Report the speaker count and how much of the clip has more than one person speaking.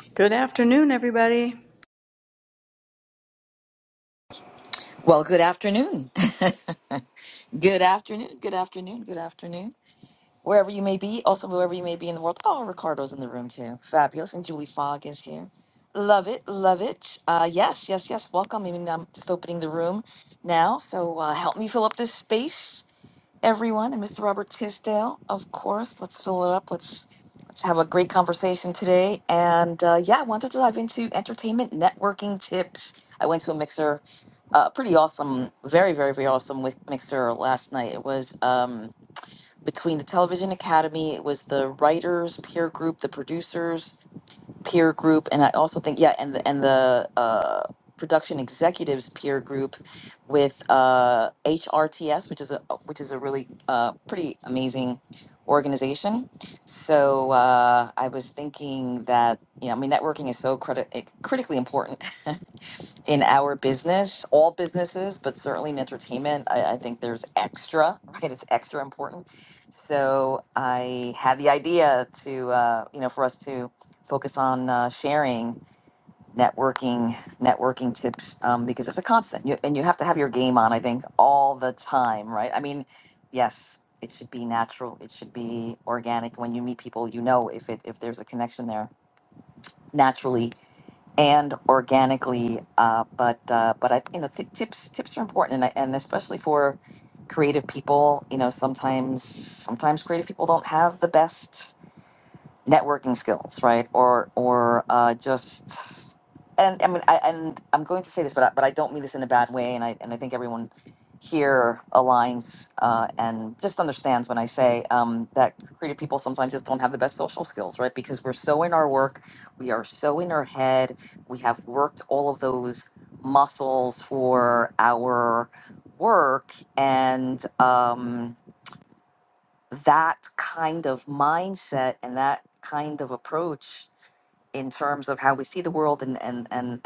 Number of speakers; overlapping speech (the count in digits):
2, no overlap